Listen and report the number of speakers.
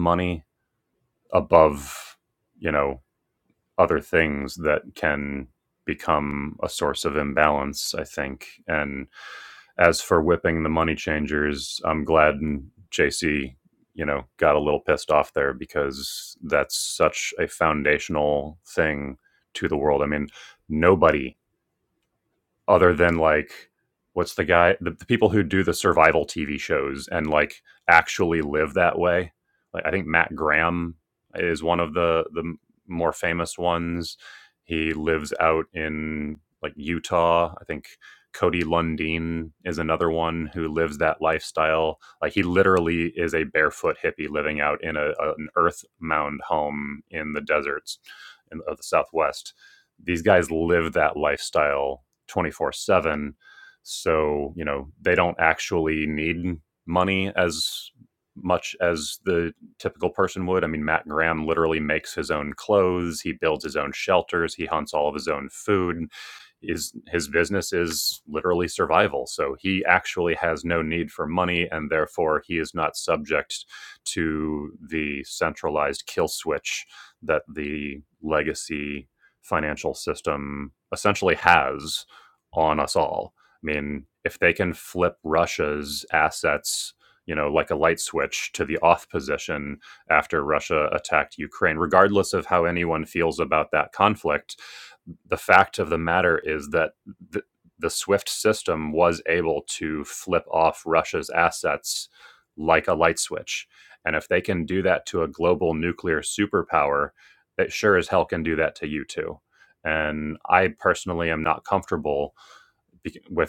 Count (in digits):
1